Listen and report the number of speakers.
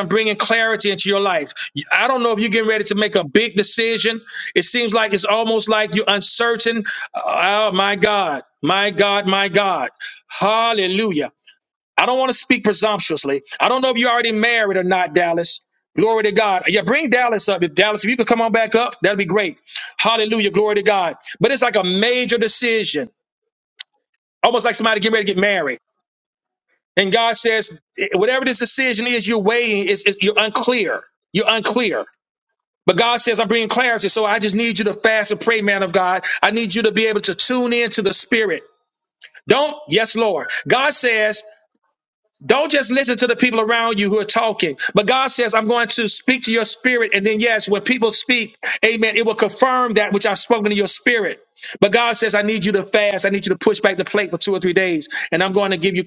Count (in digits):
1